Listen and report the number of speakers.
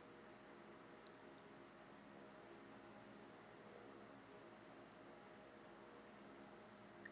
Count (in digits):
0